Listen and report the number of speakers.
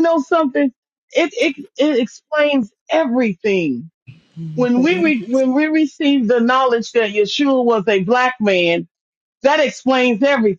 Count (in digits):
1